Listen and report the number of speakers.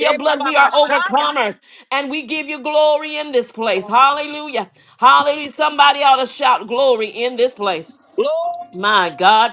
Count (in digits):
2